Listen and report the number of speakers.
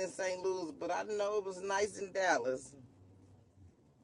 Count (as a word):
one